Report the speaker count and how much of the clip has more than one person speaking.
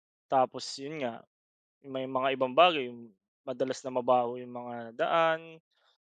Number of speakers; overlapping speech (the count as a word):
one, no overlap